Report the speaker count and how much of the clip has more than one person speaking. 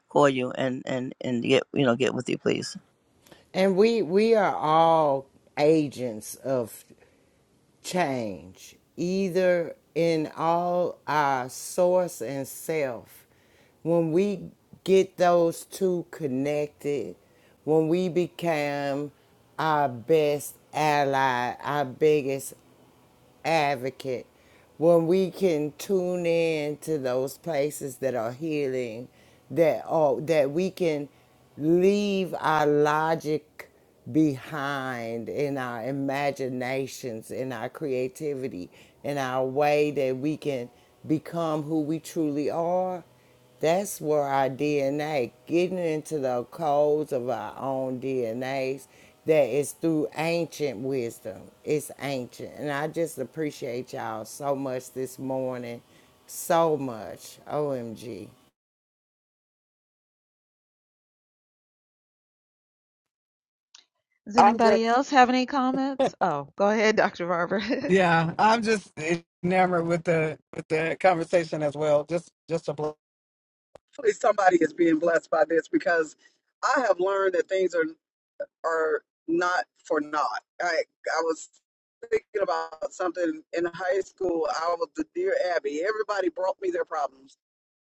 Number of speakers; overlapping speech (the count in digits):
4, under 1%